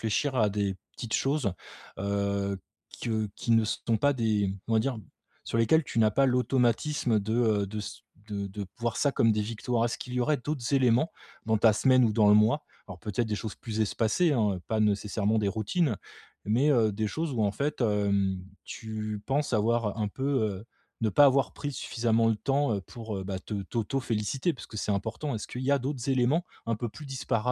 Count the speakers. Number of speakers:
1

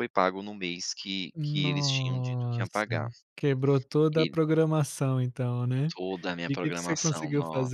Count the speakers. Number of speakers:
2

